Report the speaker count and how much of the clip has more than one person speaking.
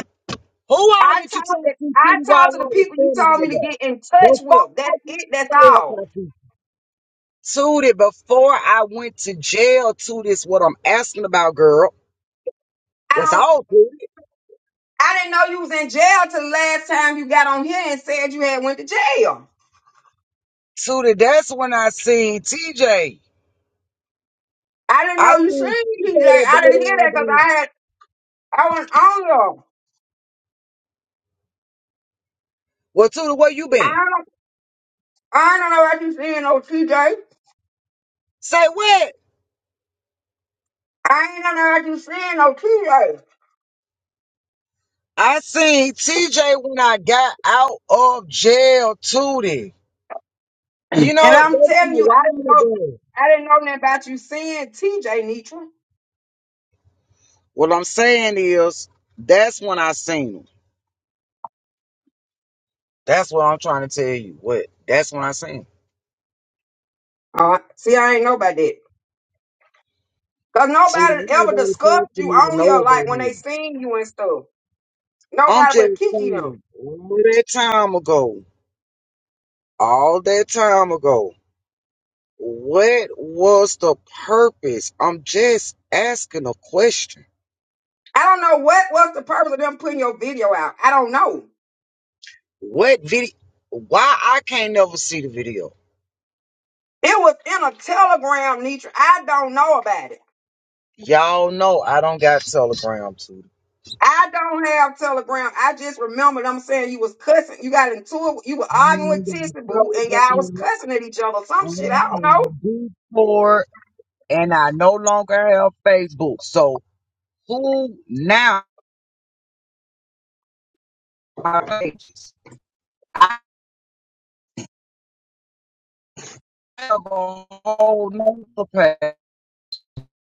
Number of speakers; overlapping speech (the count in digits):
2, about 10%